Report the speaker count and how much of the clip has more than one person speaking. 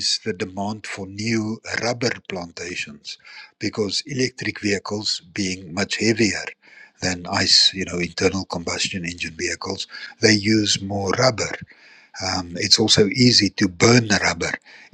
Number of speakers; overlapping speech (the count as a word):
one, no overlap